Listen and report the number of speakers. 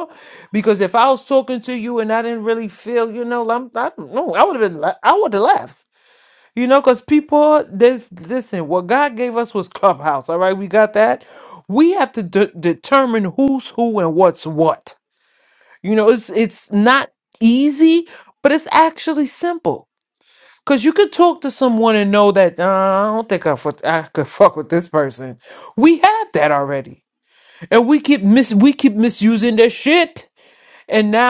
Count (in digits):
1